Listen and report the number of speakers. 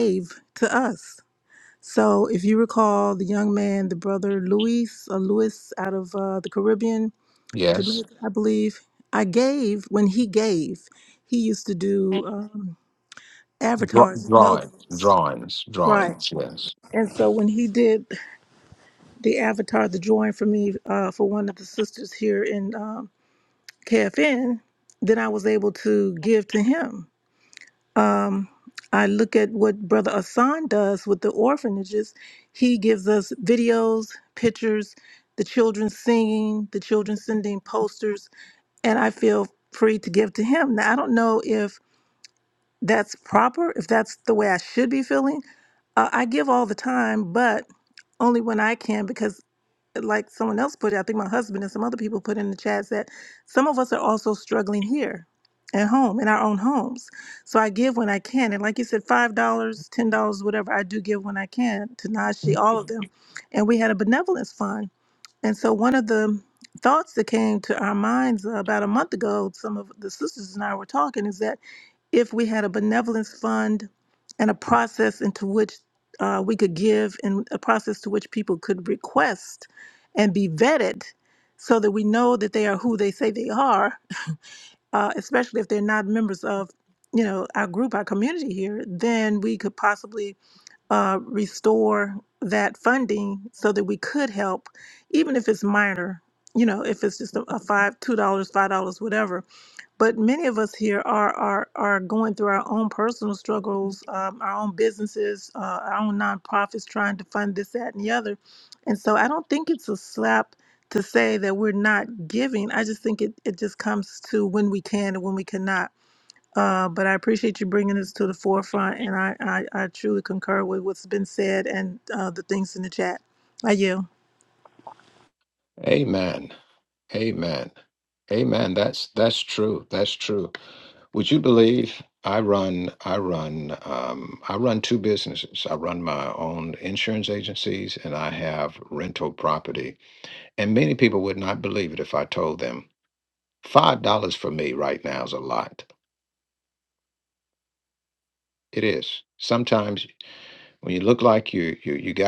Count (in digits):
2